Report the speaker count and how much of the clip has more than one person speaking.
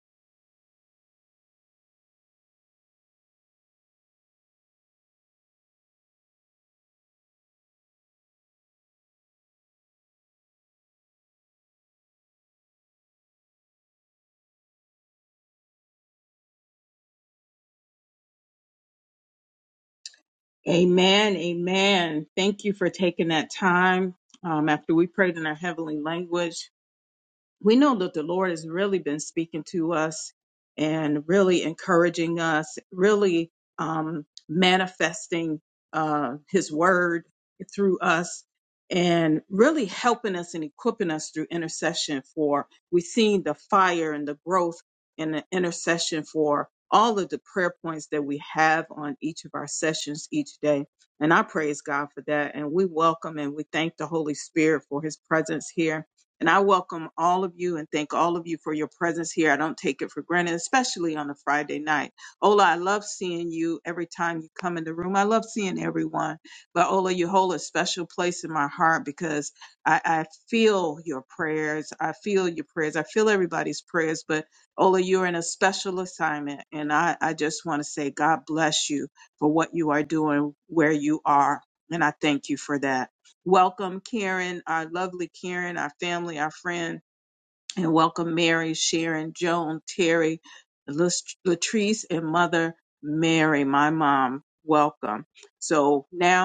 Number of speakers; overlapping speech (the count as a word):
one, no overlap